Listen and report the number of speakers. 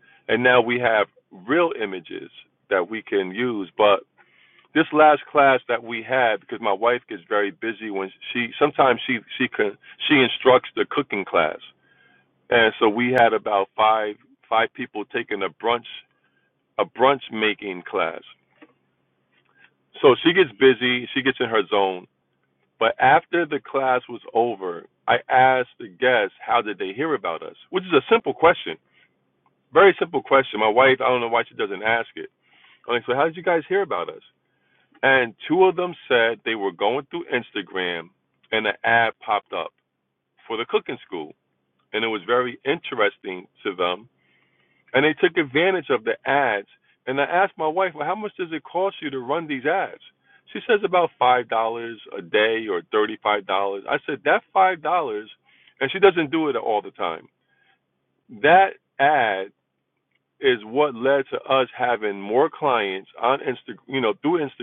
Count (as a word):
one